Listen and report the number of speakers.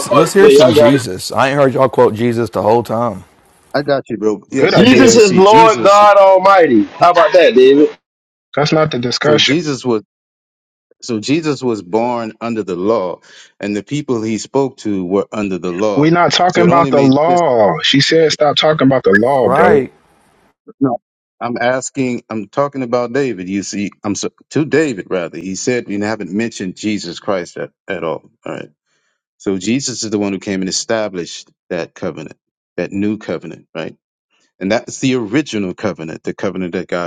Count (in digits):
4